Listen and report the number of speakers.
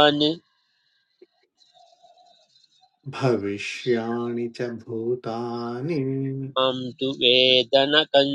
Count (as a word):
two